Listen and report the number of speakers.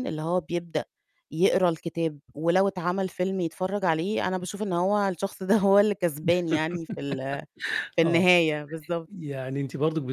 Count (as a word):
two